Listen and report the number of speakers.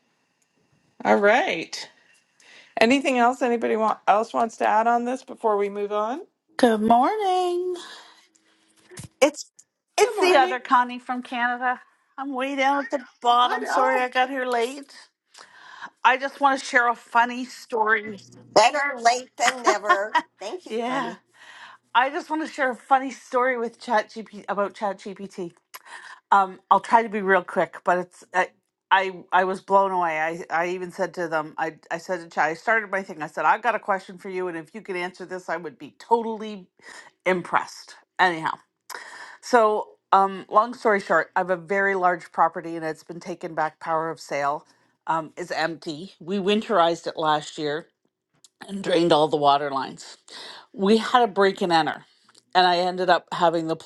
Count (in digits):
3